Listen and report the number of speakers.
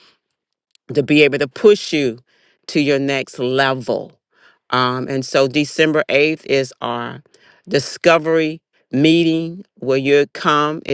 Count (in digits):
1